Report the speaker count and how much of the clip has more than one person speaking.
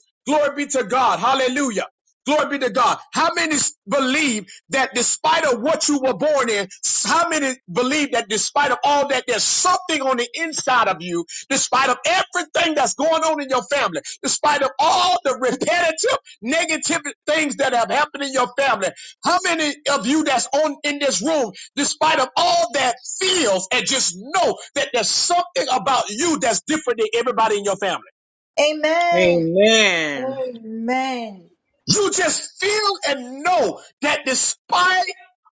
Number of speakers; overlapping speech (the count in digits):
3, about 1%